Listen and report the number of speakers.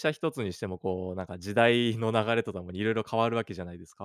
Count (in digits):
1